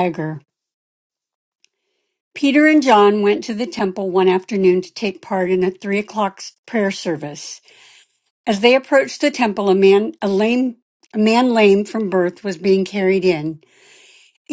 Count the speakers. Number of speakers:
one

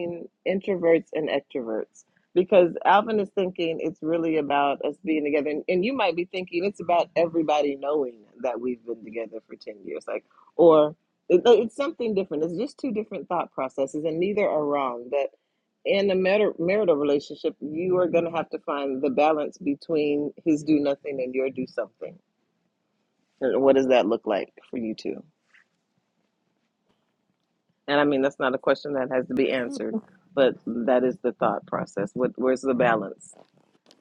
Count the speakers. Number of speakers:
one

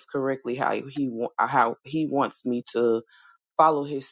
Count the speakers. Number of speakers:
one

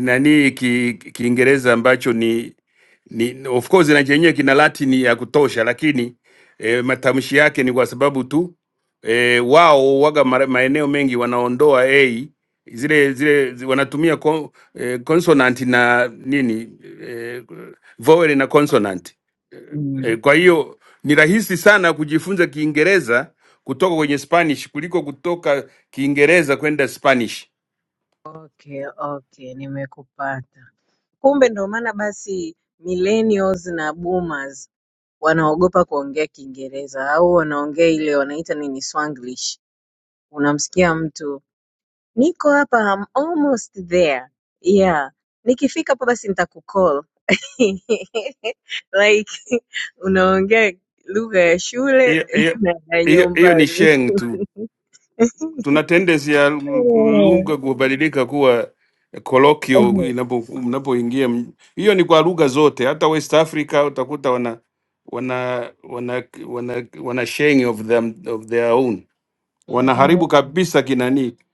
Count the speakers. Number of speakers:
two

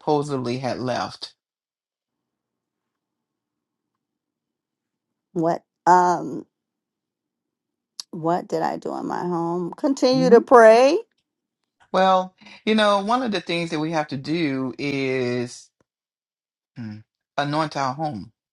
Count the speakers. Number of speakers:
two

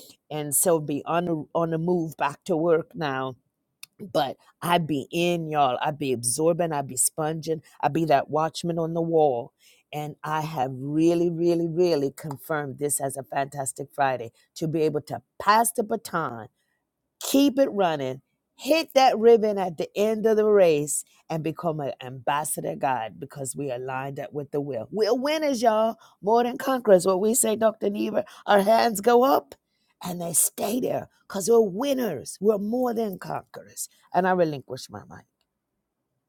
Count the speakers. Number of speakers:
one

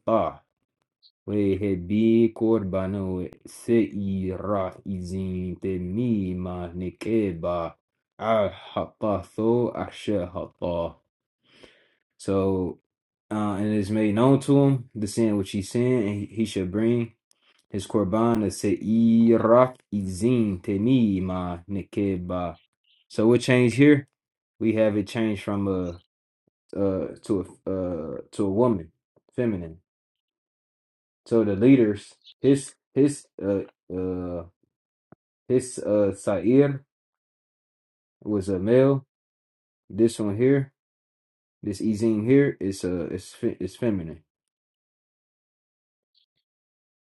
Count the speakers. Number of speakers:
one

